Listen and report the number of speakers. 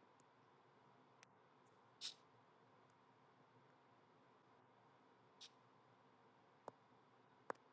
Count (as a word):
zero